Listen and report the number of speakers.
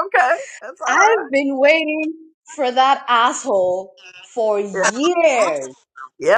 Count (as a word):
two